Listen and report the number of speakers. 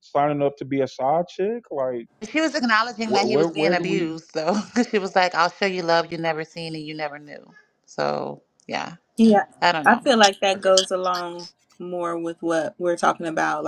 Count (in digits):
3